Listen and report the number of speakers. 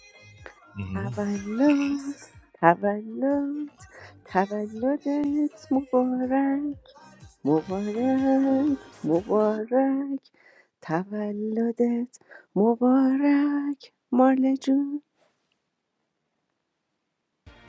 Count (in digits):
1